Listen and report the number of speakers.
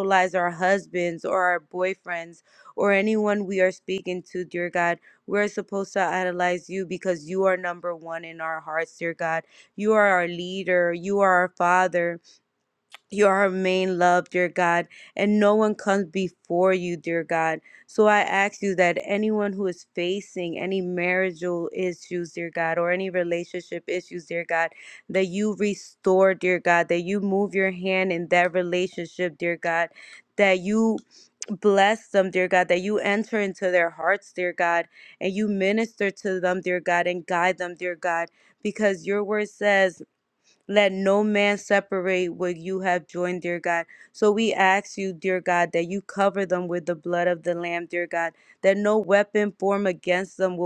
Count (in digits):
1